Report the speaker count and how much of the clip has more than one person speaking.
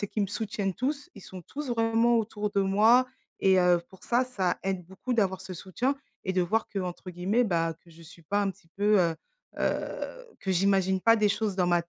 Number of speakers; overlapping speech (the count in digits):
1, no overlap